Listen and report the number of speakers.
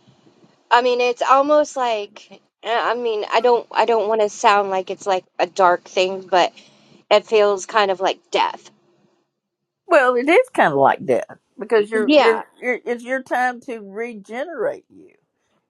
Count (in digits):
2